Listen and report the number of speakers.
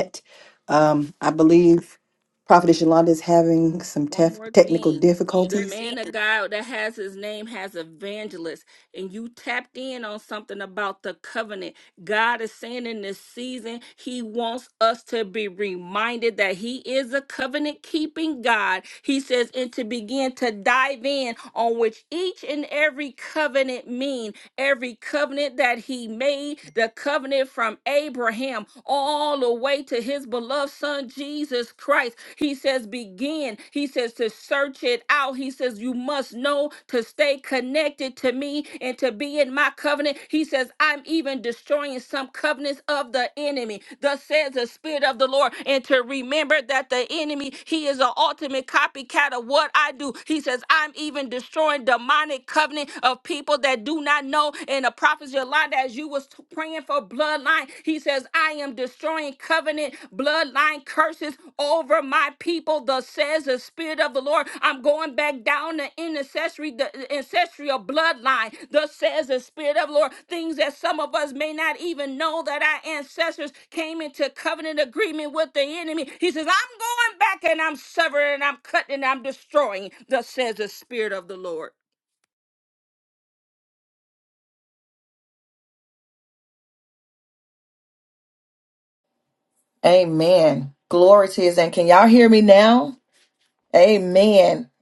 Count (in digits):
3